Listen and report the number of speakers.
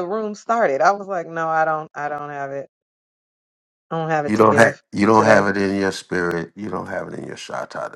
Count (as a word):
two